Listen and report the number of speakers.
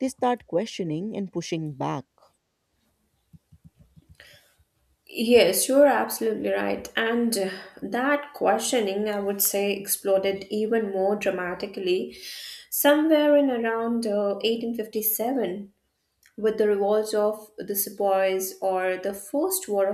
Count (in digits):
2